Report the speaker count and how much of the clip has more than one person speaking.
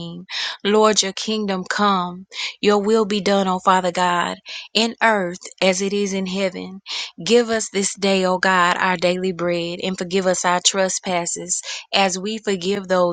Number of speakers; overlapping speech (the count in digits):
1, no overlap